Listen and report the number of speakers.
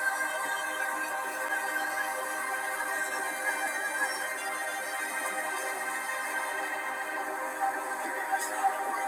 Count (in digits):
0